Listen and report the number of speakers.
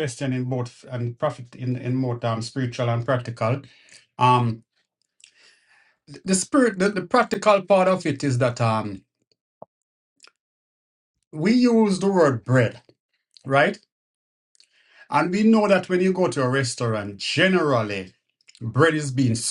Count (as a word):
one